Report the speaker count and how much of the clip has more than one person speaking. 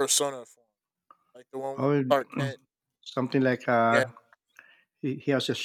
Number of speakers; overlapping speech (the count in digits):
2, about 9%